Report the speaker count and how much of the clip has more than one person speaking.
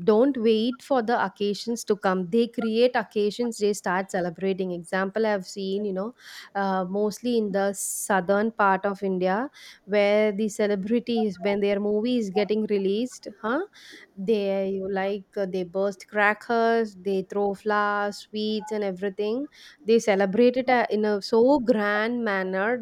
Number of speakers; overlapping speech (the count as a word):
one, no overlap